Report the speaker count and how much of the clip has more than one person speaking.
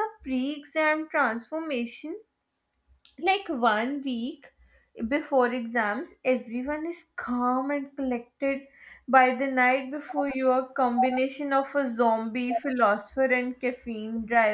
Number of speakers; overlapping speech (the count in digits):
1, no overlap